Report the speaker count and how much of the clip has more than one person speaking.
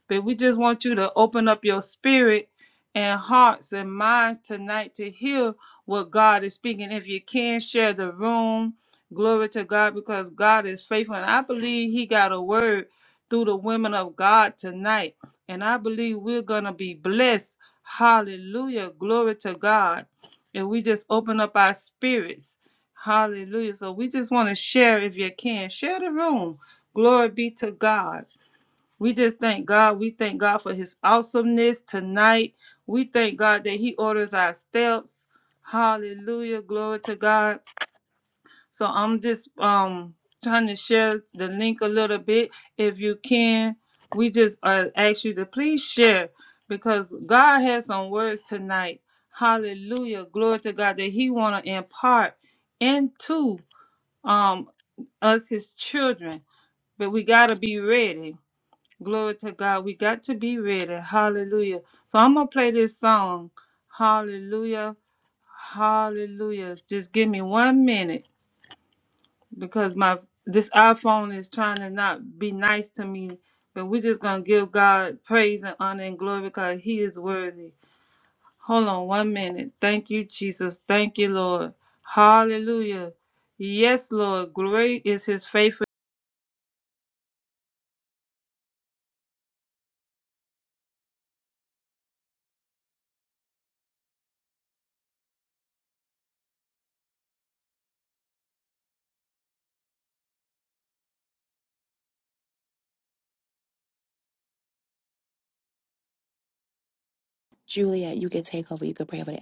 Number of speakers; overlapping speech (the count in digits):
2, no overlap